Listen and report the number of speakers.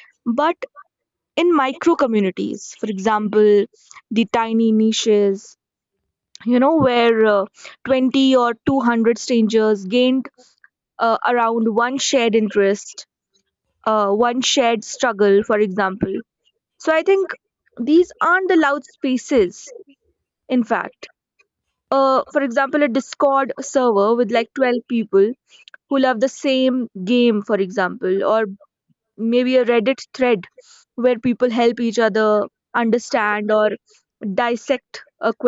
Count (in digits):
1